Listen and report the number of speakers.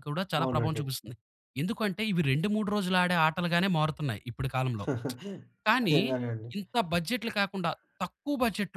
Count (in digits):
2